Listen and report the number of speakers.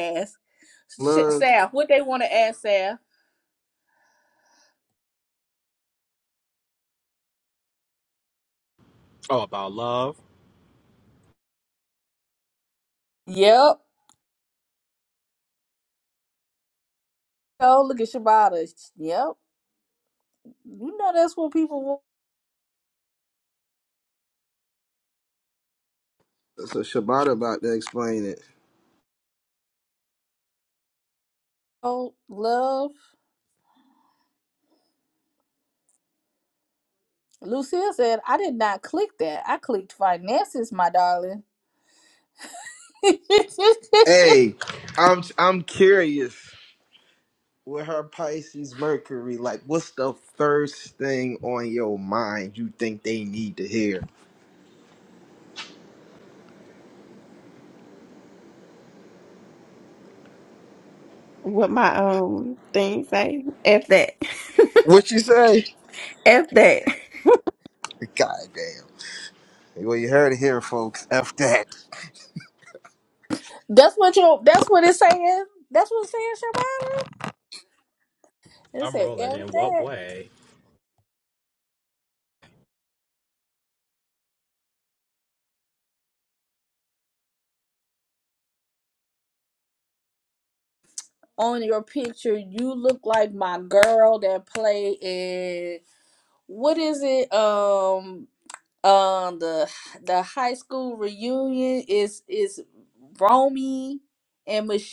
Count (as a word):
four